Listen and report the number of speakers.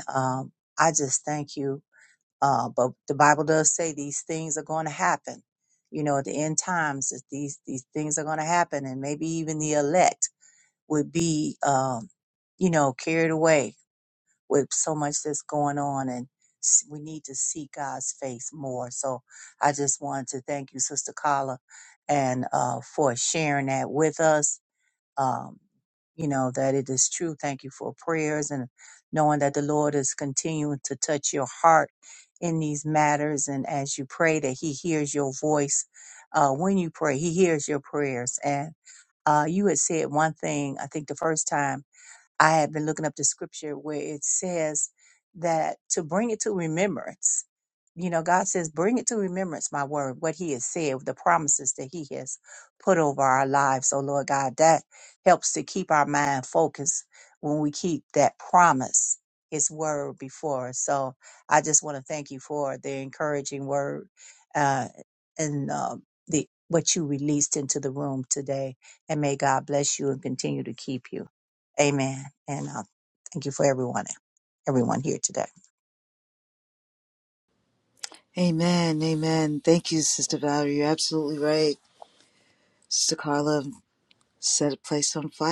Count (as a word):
two